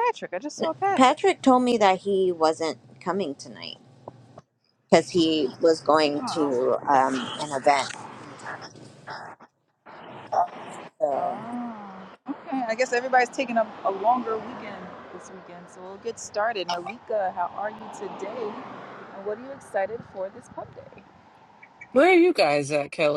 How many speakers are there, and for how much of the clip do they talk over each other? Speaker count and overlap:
three, about 5%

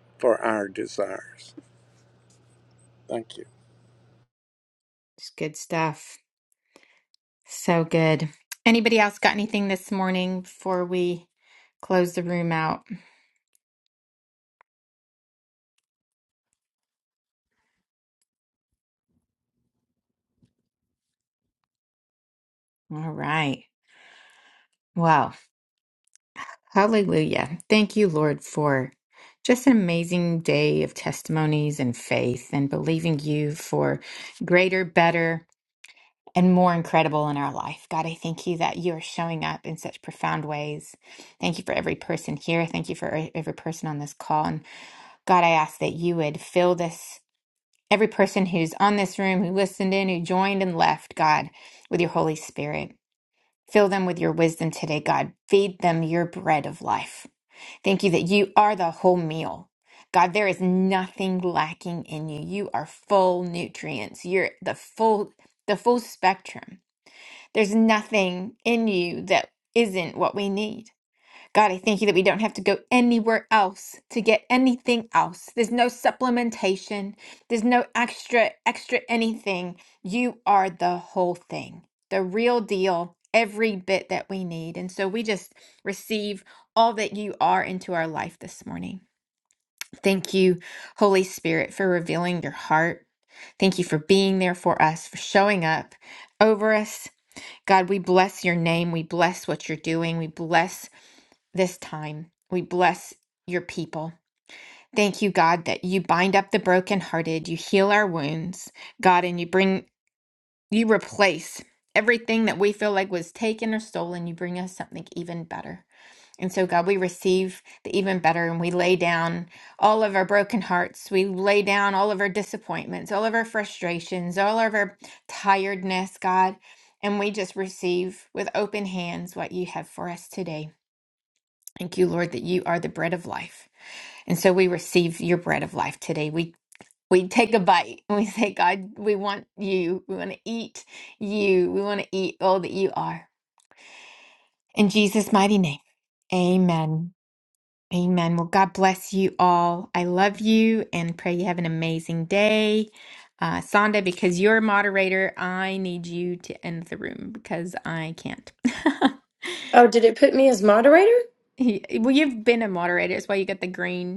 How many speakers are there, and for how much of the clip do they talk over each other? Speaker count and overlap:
three, no overlap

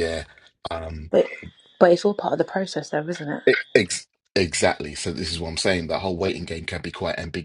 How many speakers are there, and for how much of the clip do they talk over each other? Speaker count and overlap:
two, no overlap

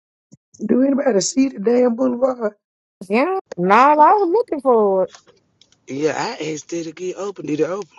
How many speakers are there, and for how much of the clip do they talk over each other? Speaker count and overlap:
three, no overlap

